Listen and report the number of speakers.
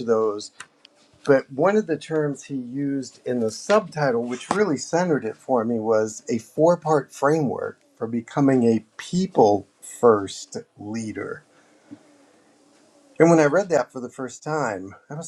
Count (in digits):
1